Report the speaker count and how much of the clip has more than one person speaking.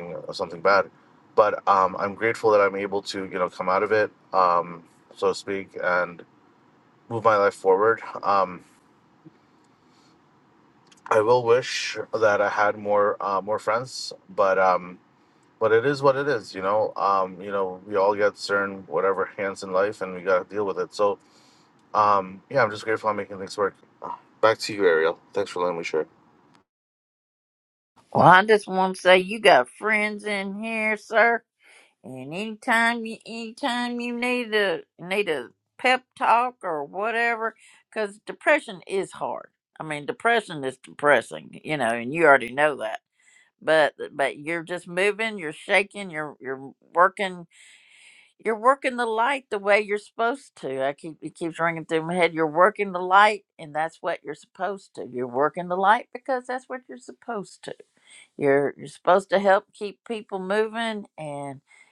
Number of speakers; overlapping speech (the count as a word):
two, no overlap